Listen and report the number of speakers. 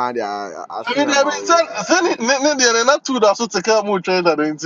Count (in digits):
2